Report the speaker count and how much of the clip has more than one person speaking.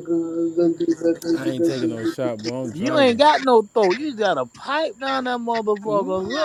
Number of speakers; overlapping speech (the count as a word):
three, about 28%